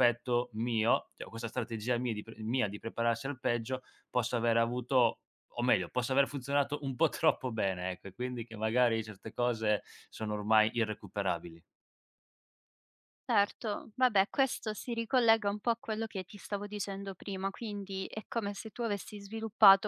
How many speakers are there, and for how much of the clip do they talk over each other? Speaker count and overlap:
two, no overlap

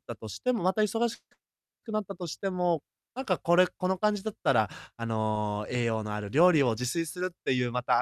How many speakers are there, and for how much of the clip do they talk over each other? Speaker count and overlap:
one, no overlap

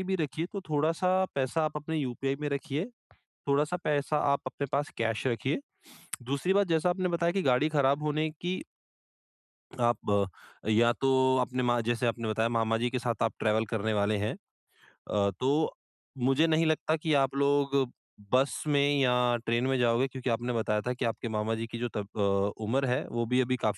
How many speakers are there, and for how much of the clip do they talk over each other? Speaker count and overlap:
one, no overlap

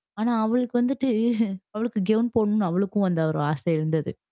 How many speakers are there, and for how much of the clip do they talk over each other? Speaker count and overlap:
one, no overlap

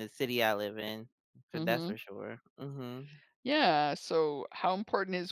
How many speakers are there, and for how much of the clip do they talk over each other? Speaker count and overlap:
two, about 8%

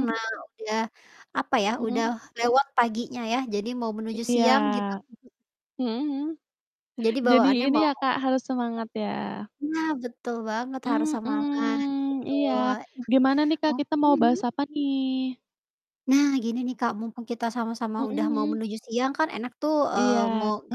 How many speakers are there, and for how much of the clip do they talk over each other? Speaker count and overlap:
two, about 24%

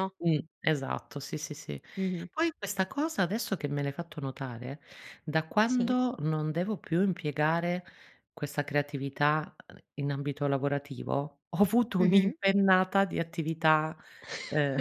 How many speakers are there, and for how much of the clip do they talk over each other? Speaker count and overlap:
two, about 4%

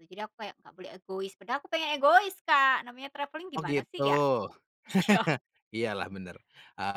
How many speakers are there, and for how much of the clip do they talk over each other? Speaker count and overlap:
two, about 7%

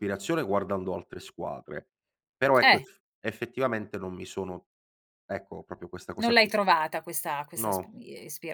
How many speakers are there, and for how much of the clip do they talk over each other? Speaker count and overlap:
two, about 10%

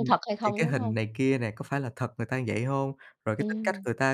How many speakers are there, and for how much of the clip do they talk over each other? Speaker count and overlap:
two, about 22%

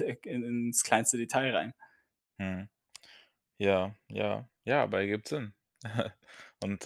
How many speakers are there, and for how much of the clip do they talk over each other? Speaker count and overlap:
two, no overlap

